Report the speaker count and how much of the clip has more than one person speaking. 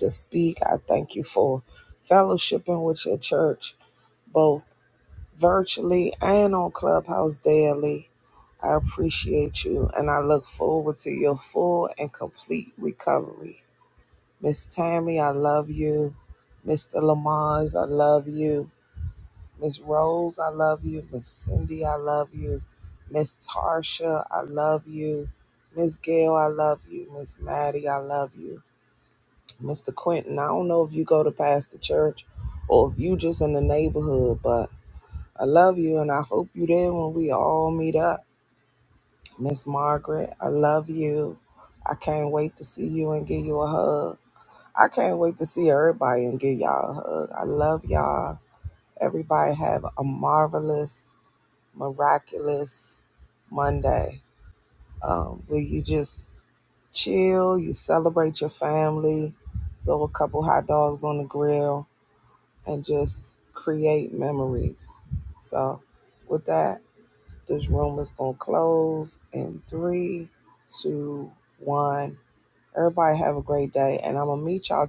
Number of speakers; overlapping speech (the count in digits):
1, no overlap